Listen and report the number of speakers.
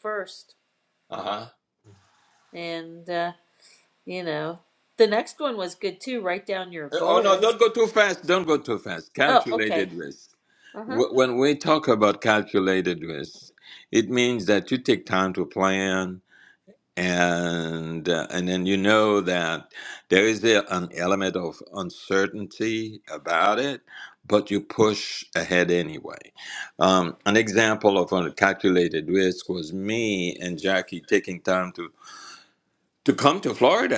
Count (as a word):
two